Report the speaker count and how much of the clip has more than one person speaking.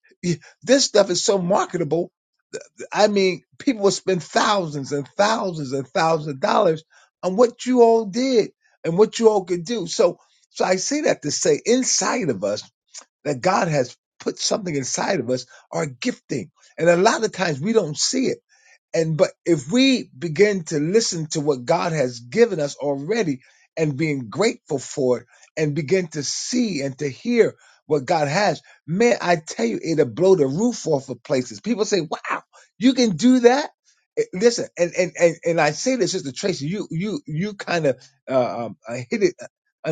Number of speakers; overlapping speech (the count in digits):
1, no overlap